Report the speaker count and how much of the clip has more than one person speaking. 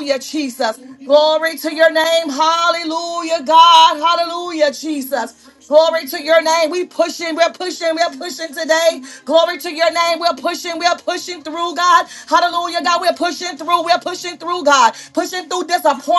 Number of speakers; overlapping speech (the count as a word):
one, no overlap